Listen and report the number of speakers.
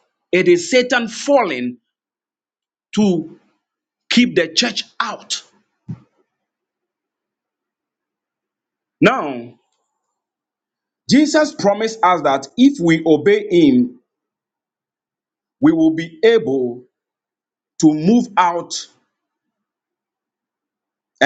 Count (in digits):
1